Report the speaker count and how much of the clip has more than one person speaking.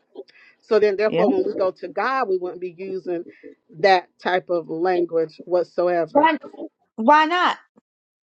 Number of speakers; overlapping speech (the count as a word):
two, about 4%